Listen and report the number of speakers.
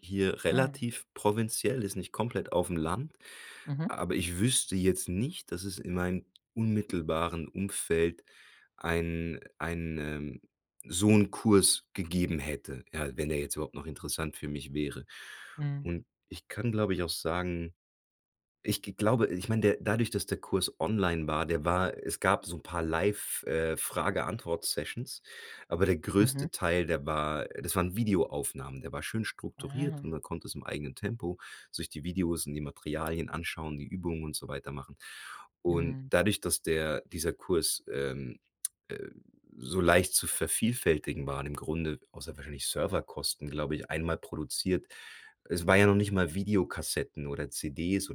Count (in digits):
2